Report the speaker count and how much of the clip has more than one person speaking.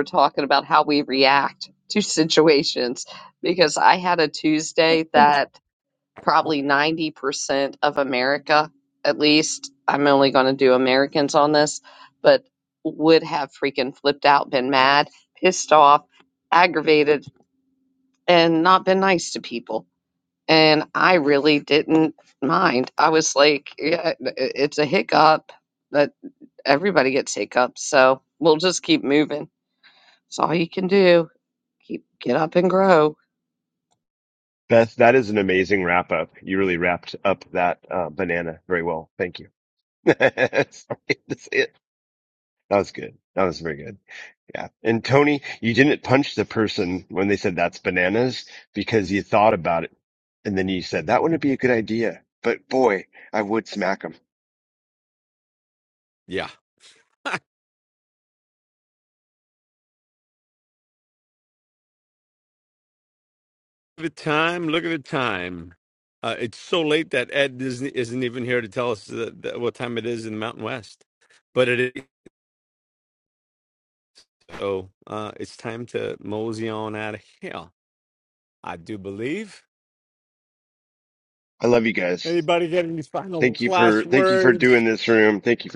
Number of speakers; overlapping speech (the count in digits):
3, about 2%